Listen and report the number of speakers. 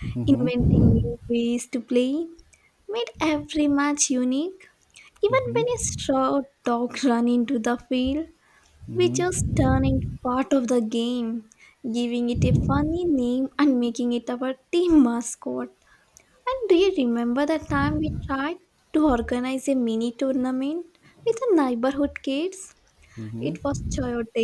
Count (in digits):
2